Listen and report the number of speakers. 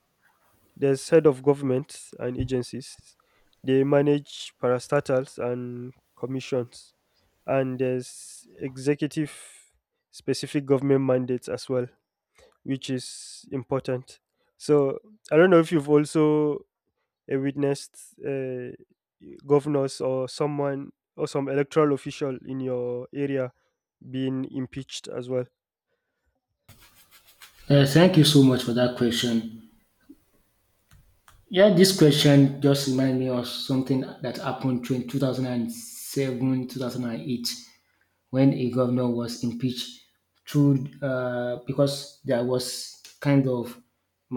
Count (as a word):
two